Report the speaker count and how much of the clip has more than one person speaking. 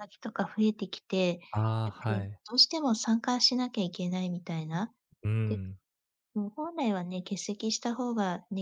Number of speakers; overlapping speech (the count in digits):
2, about 6%